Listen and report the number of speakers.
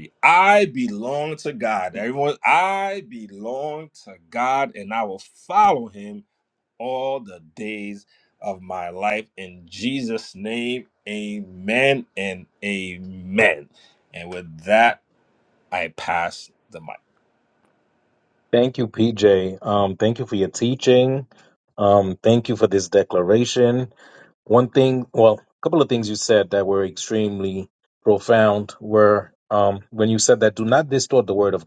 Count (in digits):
2